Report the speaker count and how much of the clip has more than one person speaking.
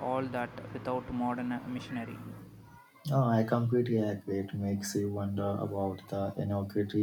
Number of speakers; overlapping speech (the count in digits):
2, no overlap